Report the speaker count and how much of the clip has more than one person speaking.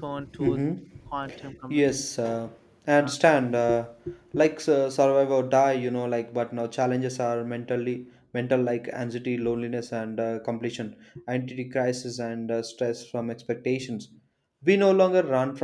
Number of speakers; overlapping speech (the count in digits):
2, about 4%